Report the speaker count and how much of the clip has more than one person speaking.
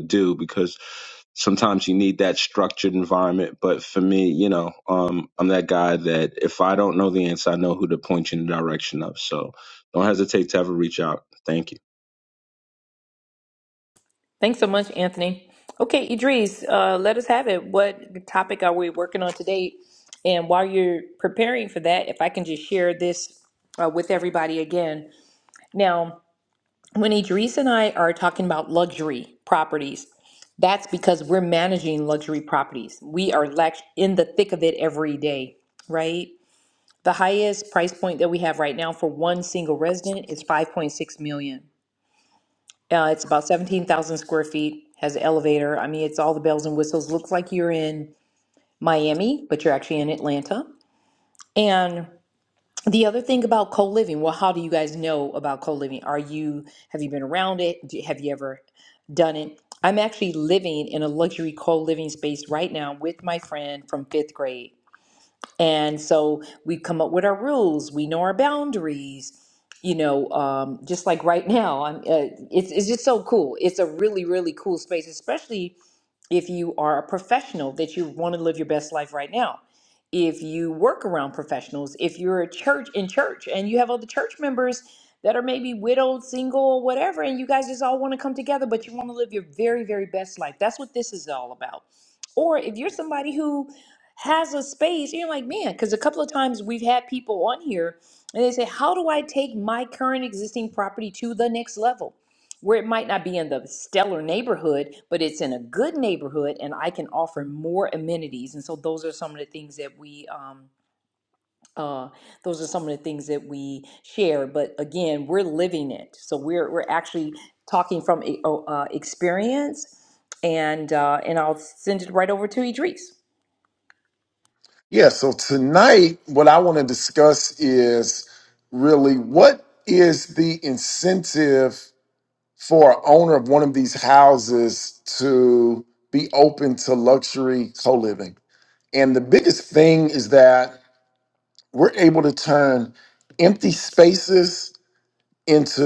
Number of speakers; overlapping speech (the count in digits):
3, no overlap